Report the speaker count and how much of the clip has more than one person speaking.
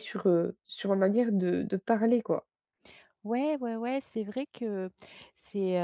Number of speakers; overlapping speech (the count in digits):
2, no overlap